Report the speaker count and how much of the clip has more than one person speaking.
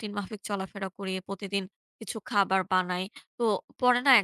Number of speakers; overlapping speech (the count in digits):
1, no overlap